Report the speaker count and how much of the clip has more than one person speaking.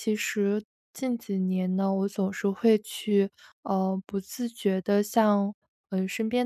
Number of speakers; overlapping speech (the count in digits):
1, no overlap